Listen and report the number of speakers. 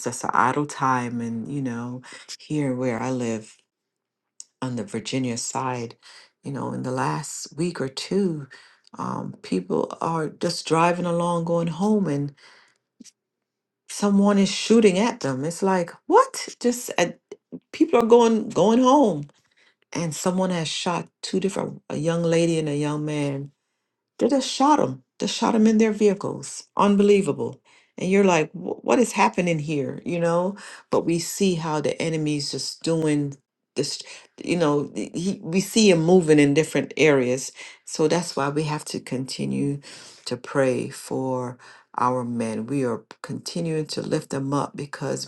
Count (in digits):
1